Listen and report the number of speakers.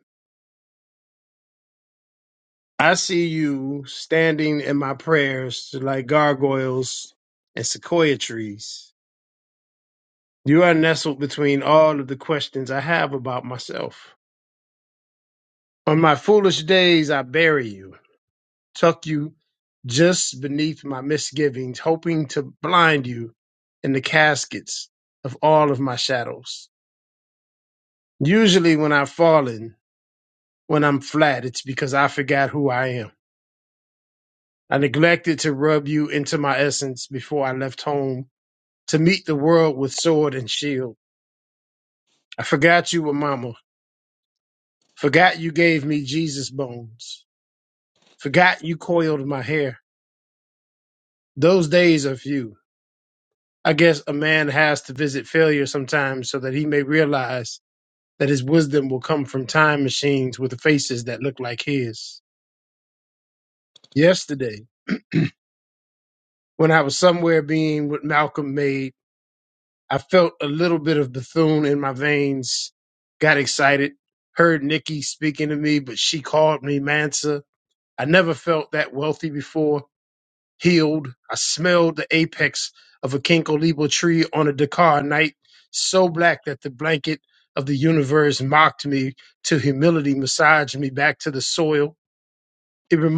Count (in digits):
1